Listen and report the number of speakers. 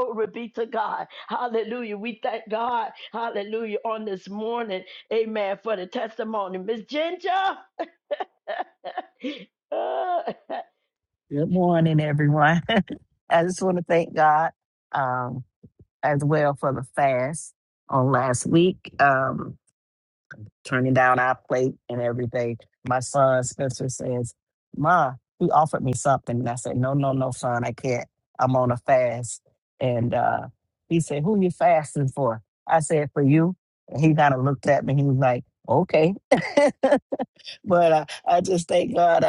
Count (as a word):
two